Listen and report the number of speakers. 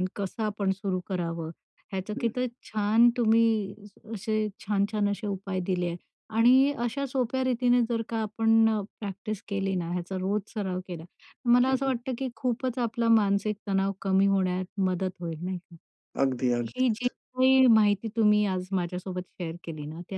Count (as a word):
two